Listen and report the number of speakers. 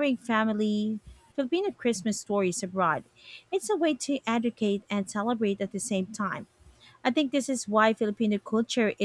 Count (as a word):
one